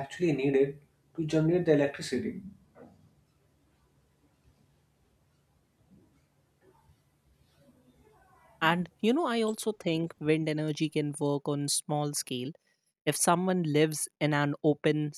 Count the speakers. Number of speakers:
two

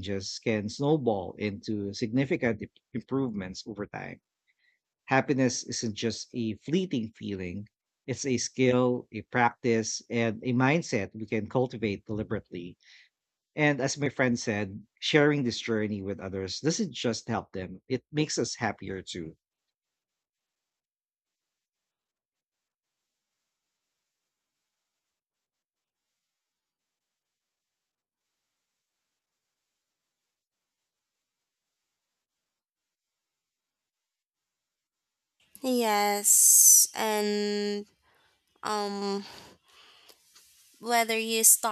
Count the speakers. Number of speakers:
two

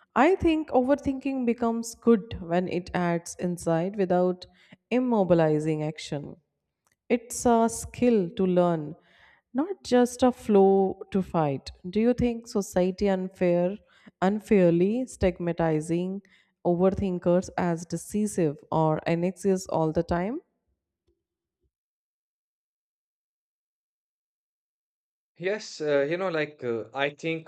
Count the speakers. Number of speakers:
two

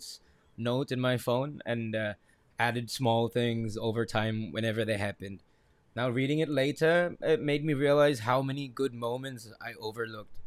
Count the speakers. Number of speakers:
one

